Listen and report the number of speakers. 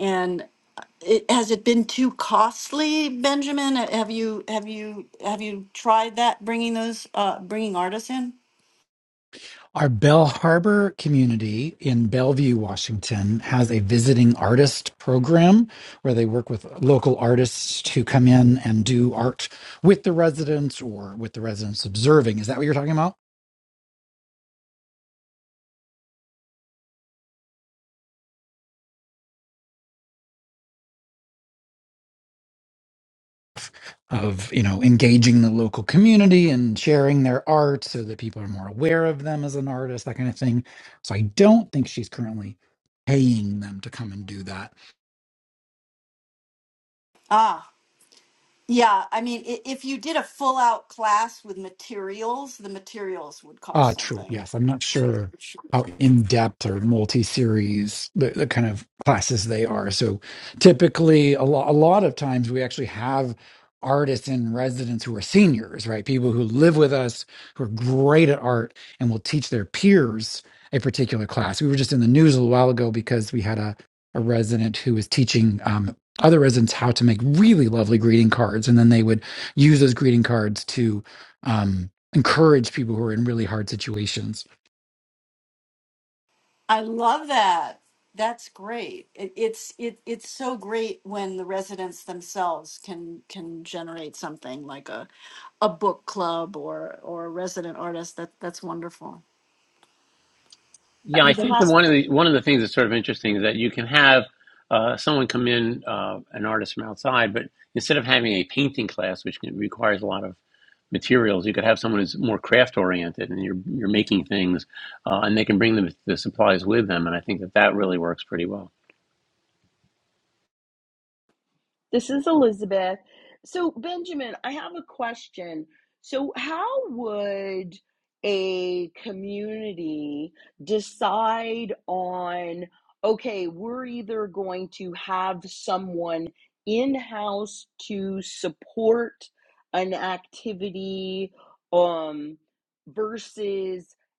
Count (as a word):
four